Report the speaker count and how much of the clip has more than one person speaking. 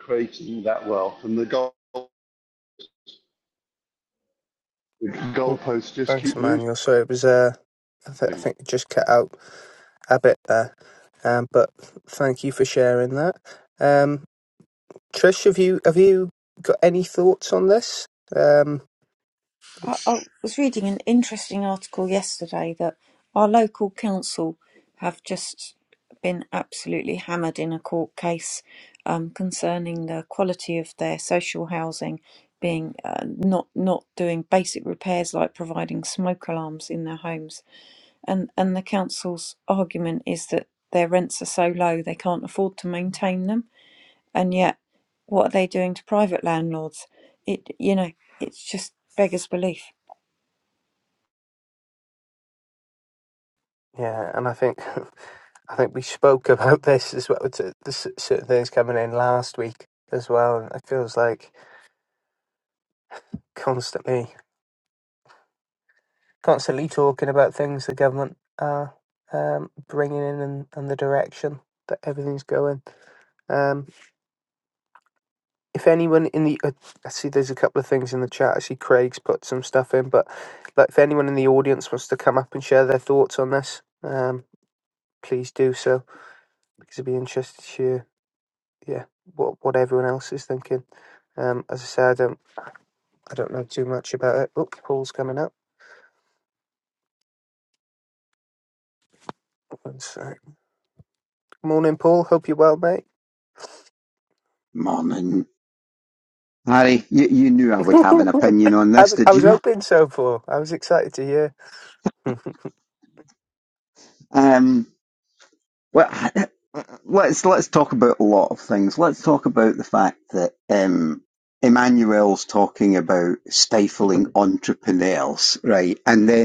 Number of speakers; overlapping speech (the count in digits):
4, about 1%